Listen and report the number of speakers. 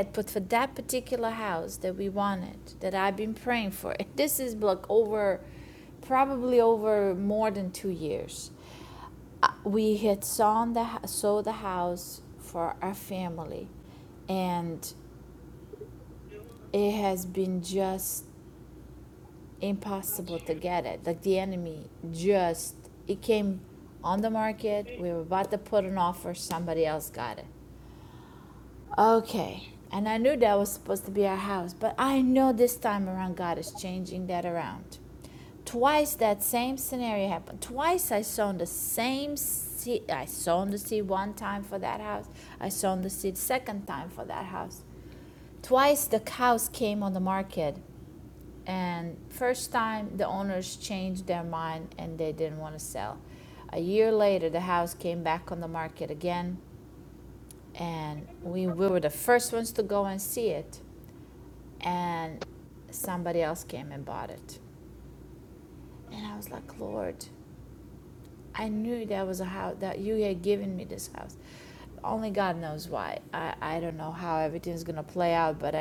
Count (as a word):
one